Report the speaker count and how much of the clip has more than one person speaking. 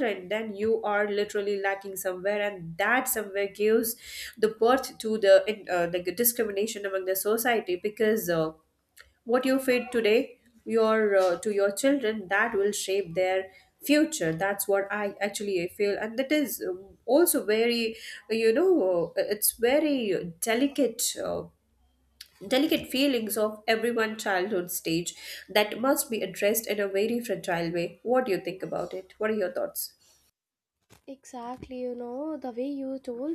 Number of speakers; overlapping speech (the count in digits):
2, no overlap